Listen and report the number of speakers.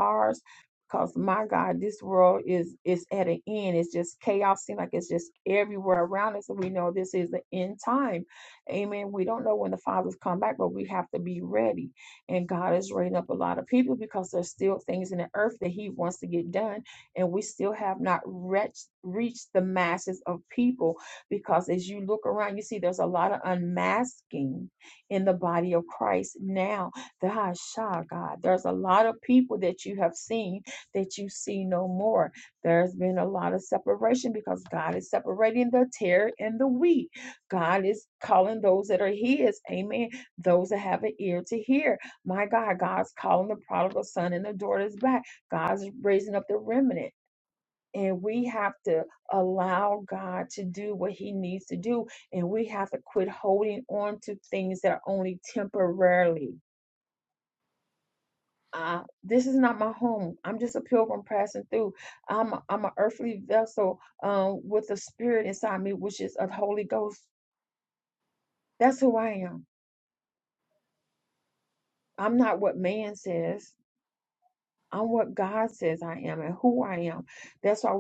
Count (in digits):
1